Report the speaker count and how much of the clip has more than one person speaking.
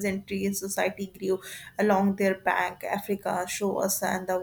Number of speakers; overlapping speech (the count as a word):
one, no overlap